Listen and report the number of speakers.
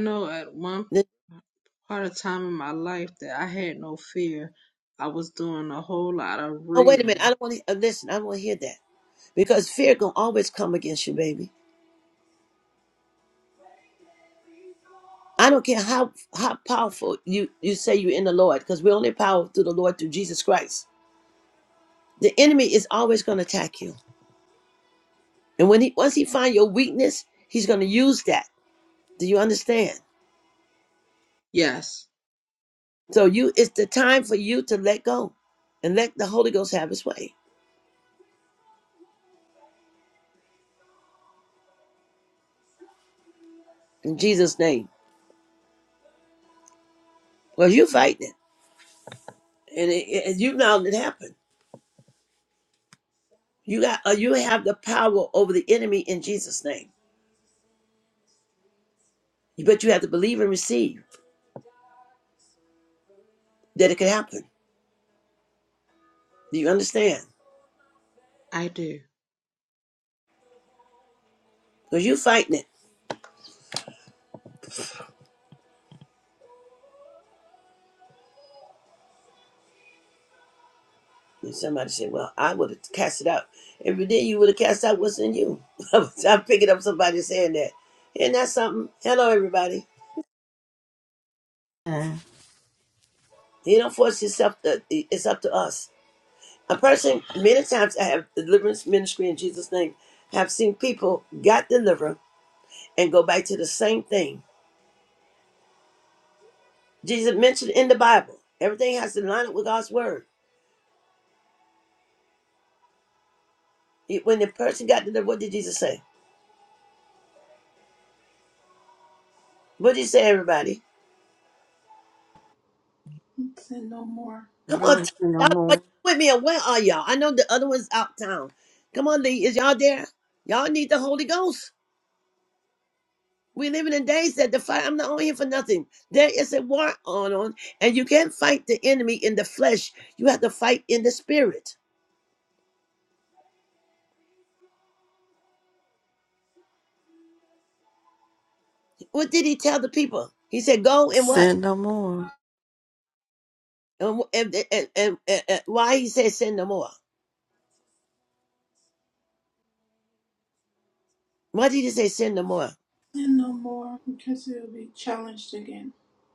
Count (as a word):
four